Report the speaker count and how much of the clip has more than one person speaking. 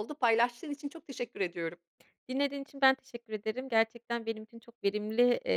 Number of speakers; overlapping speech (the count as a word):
two, no overlap